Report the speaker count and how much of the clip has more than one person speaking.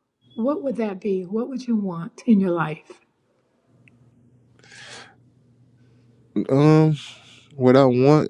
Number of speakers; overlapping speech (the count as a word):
two, no overlap